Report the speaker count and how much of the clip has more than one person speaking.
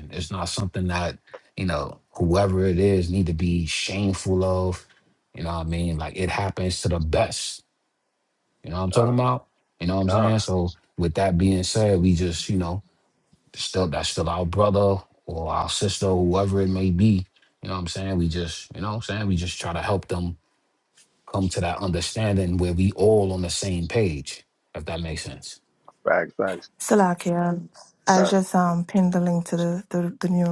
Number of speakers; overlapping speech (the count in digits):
3, about 3%